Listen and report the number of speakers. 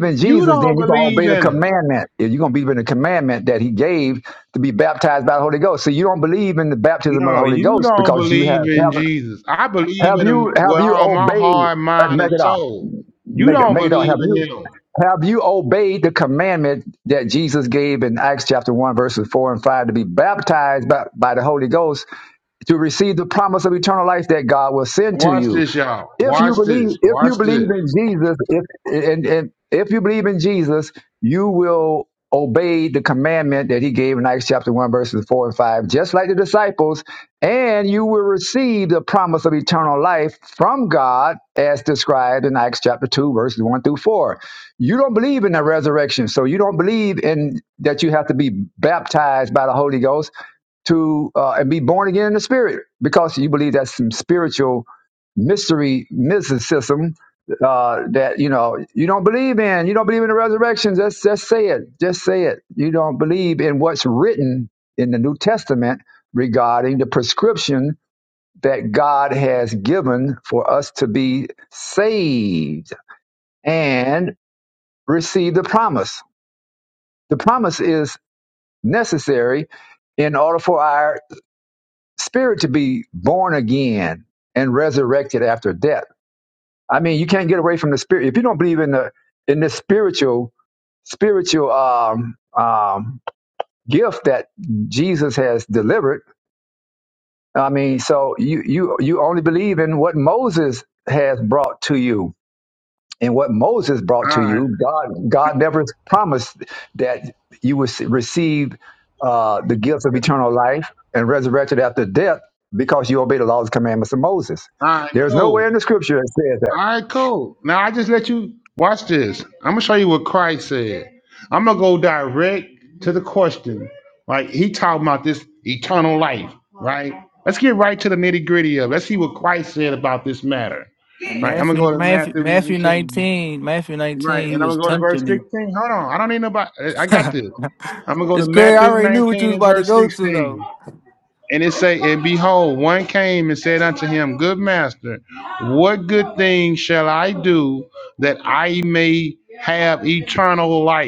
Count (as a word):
three